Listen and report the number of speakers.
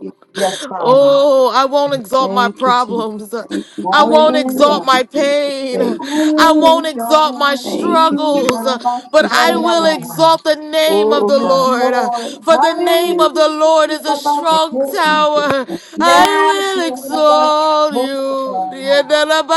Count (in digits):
3